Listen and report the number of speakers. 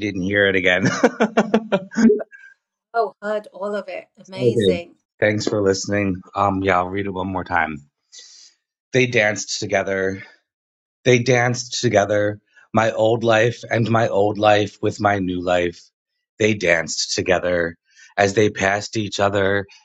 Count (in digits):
2